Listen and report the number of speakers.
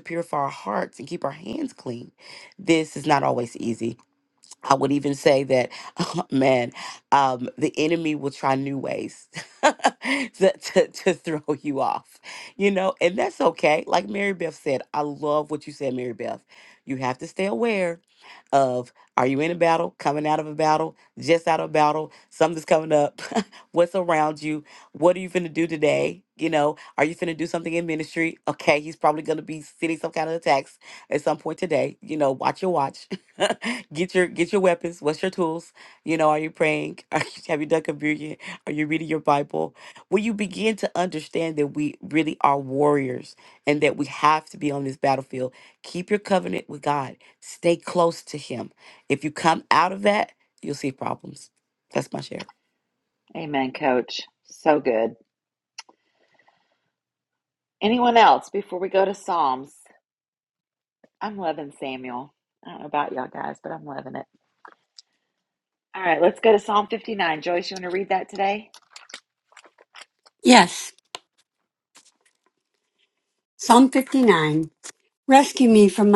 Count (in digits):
3